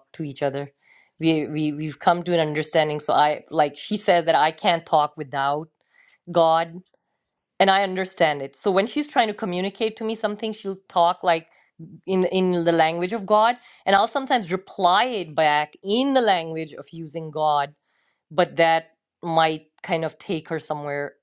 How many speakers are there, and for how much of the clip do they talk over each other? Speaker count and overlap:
one, no overlap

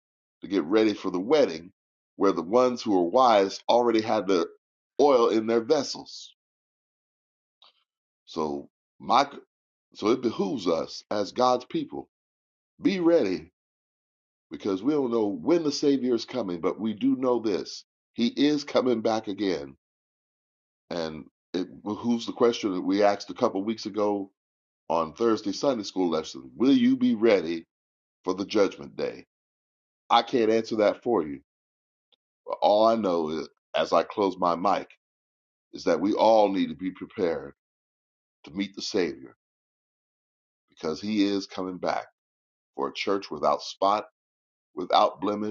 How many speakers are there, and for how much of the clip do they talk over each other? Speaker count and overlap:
one, no overlap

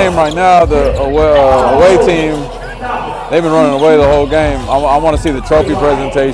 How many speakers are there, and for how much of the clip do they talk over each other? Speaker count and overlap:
one, no overlap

